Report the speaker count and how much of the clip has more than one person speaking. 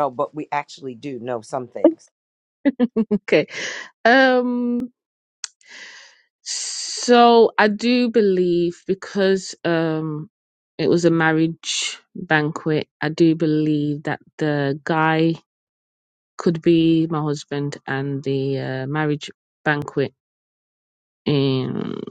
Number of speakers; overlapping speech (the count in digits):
2, no overlap